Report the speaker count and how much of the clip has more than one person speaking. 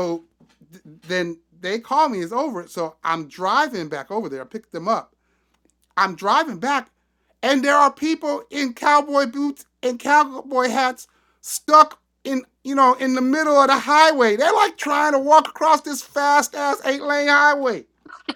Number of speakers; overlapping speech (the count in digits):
1, no overlap